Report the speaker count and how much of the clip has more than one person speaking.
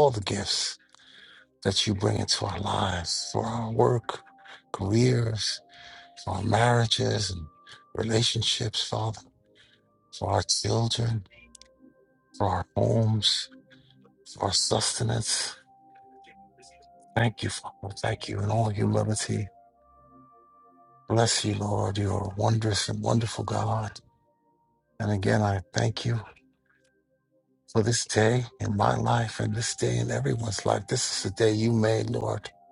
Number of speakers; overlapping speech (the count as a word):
one, no overlap